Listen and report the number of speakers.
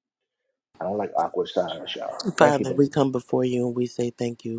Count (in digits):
2